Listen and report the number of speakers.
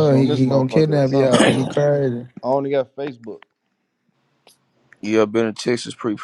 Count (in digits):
3